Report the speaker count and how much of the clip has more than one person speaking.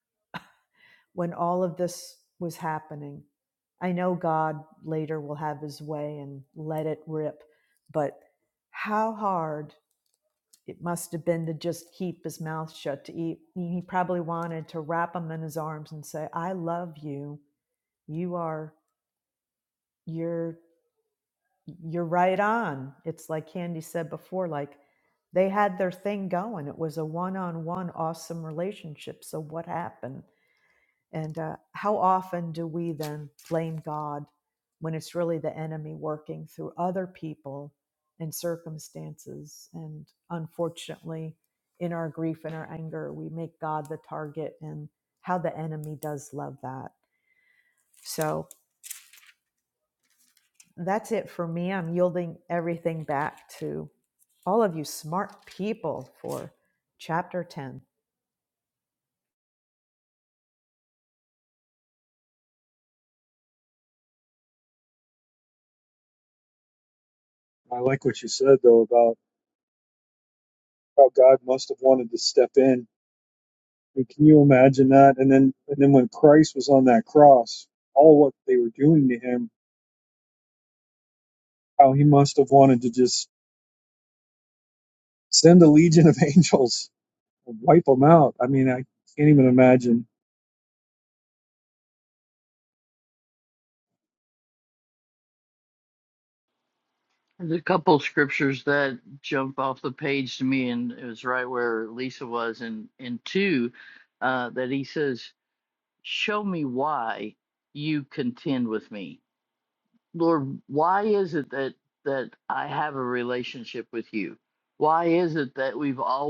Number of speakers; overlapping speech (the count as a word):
three, no overlap